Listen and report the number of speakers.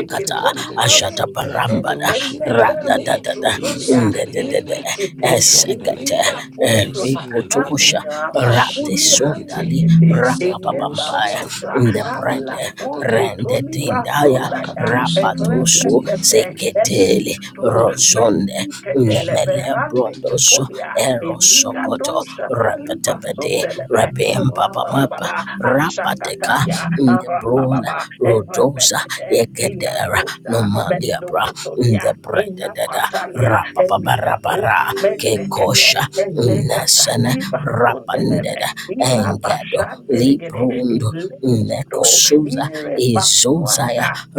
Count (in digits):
3